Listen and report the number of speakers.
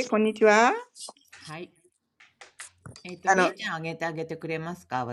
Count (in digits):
2